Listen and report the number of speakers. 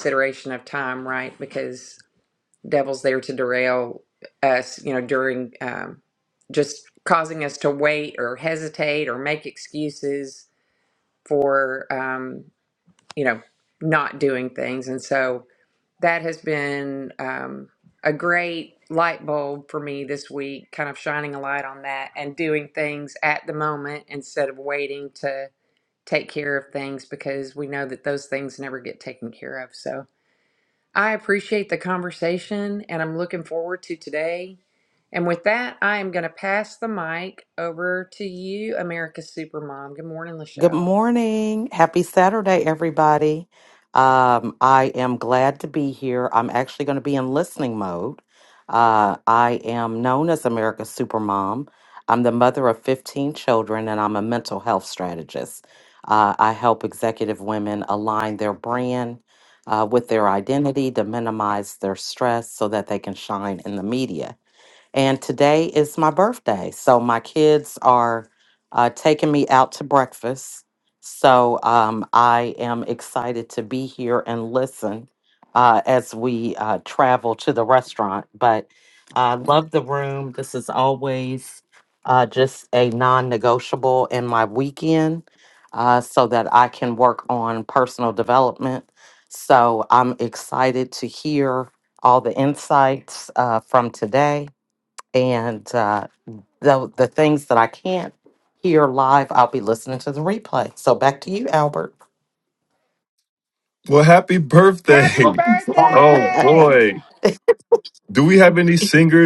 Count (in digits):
3